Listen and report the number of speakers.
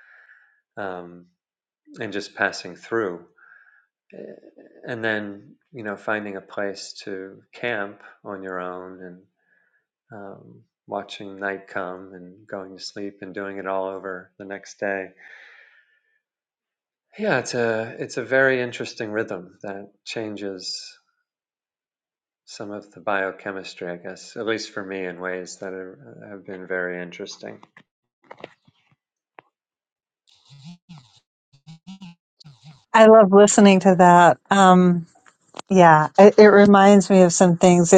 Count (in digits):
2